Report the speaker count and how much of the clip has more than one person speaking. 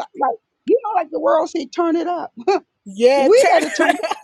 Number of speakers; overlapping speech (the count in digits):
2, about 20%